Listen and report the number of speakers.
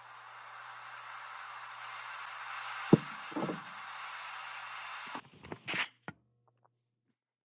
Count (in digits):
0